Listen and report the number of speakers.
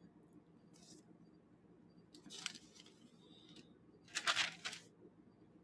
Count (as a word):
zero